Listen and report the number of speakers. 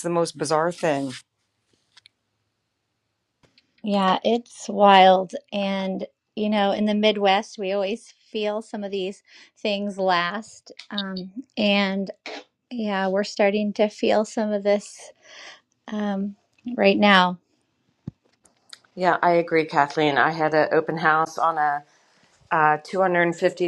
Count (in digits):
3